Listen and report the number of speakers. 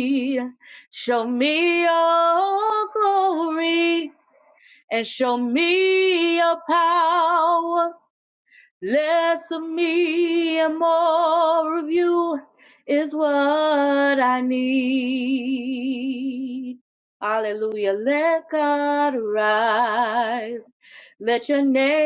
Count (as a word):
one